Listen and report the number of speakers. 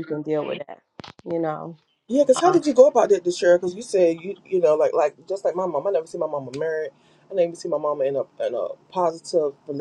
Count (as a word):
two